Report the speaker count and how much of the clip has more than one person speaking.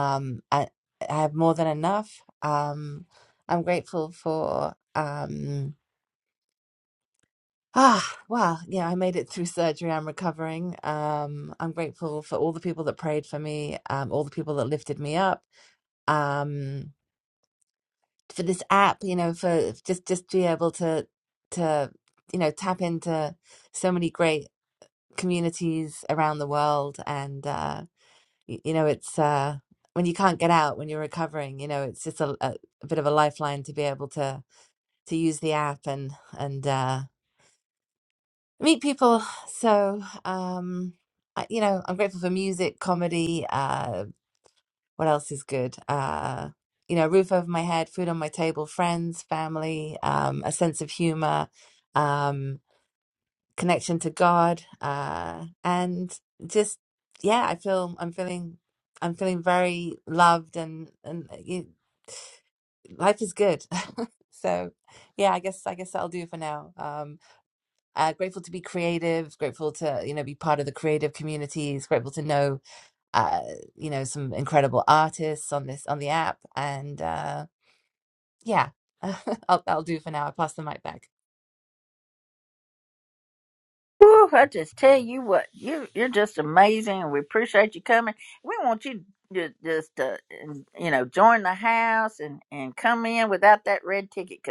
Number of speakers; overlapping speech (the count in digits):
2, no overlap